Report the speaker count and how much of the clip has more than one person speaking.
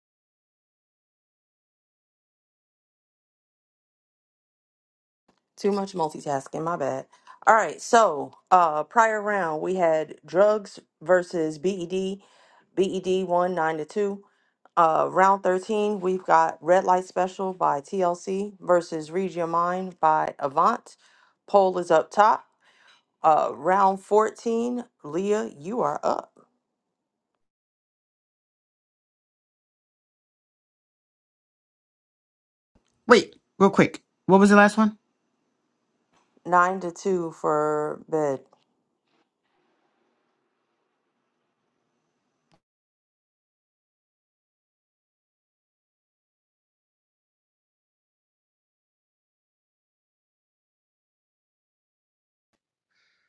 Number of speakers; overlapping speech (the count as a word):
two, no overlap